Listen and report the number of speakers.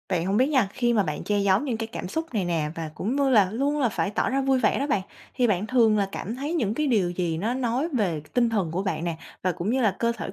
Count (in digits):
1